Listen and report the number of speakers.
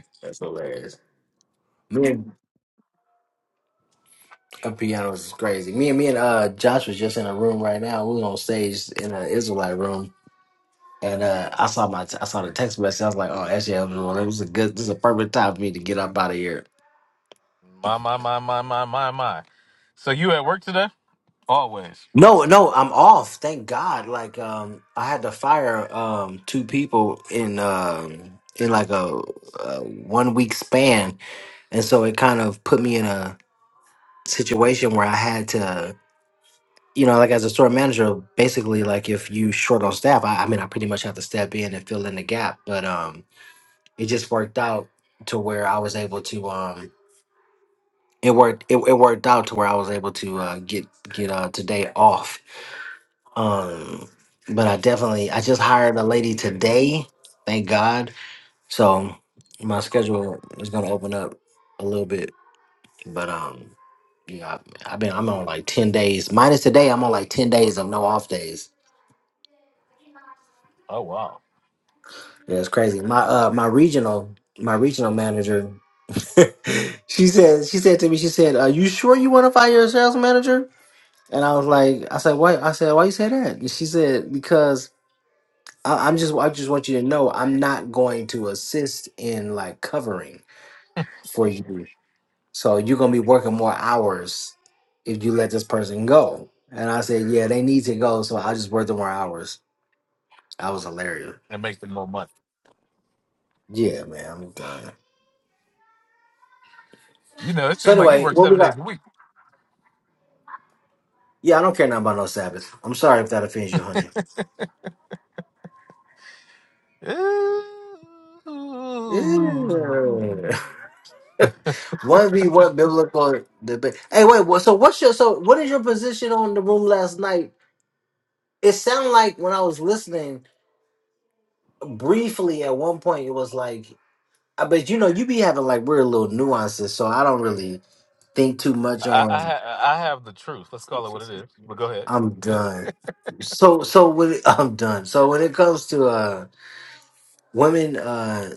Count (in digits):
2